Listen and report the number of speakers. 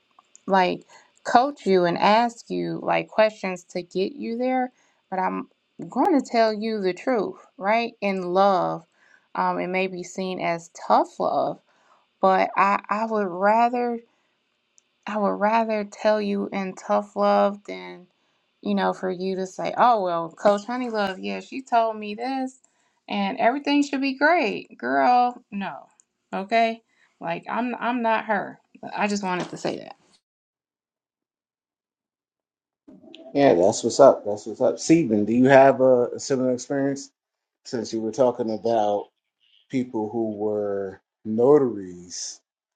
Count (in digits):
2